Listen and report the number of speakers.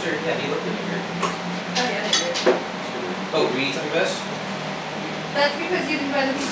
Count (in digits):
2